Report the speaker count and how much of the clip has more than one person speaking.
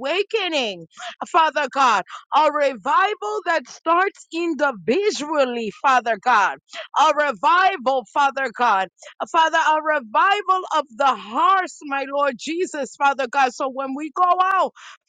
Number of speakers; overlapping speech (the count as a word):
one, no overlap